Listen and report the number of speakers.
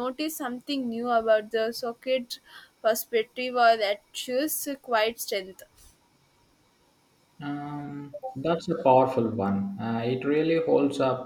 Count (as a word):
two